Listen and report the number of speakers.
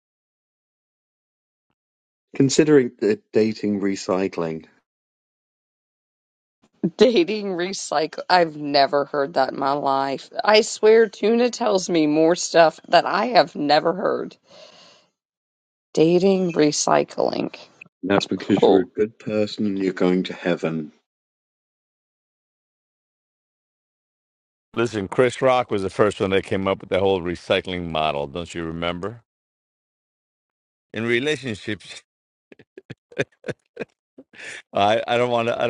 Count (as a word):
three